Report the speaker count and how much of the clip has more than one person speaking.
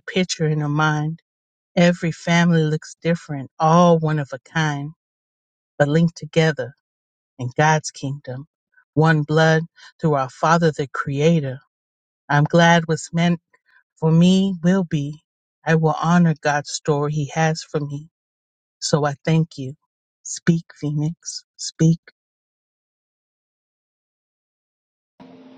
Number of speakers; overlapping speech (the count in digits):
1, no overlap